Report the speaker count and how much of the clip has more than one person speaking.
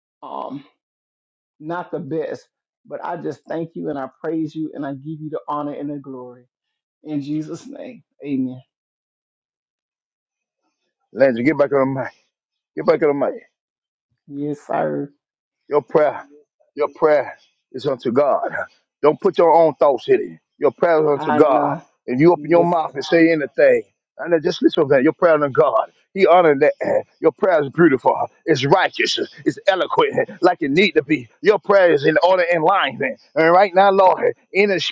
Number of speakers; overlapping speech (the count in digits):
2, about 4%